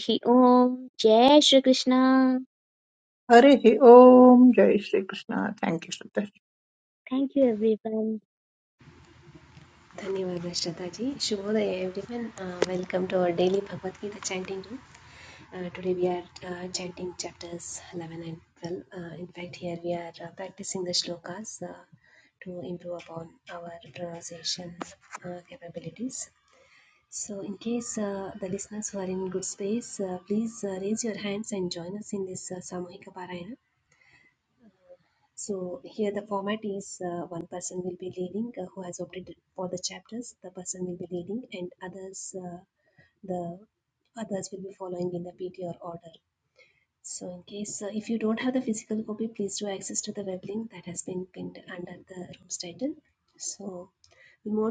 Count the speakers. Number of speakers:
3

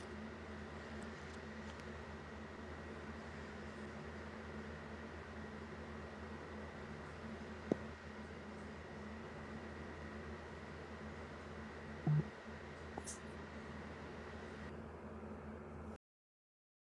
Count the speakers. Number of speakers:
0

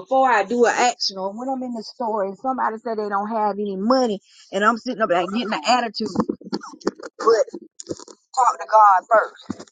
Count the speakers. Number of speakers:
1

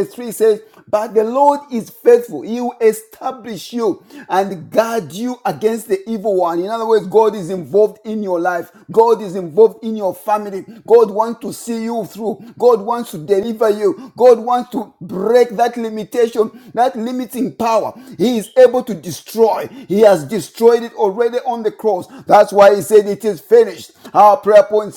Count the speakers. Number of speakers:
1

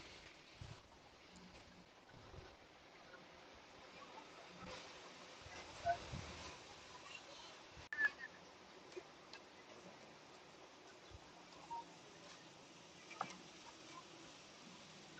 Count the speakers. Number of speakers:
0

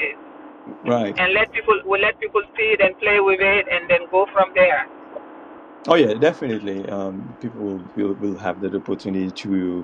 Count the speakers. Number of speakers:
2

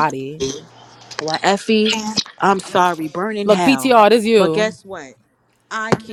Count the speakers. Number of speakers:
2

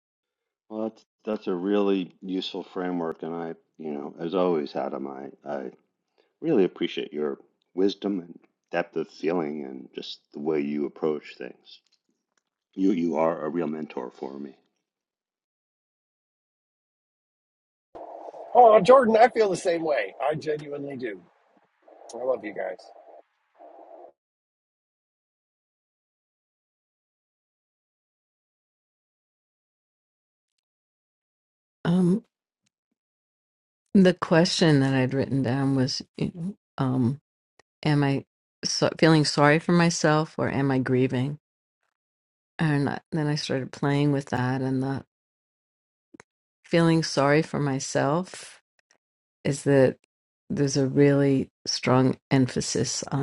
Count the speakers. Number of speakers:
3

